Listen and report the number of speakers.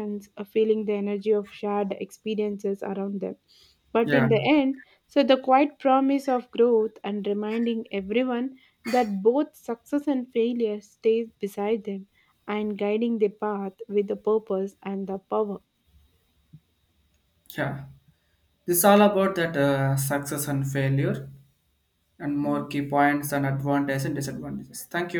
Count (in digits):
2